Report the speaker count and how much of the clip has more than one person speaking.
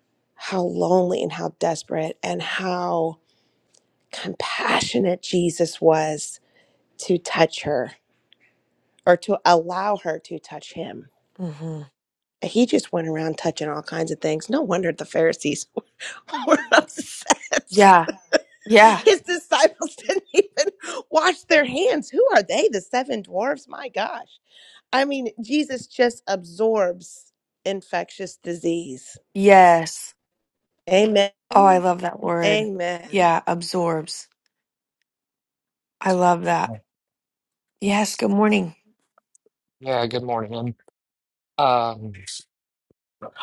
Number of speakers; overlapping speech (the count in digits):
3, about 1%